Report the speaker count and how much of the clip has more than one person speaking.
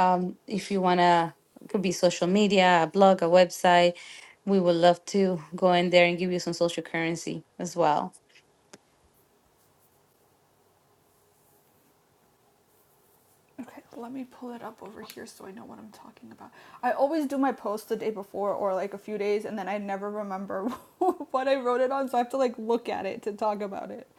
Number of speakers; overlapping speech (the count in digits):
2, no overlap